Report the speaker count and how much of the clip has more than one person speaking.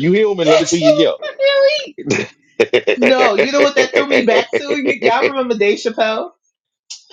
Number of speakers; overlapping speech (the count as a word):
two, about 11%